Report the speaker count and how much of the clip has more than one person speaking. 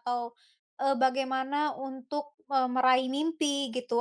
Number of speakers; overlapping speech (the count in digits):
1, no overlap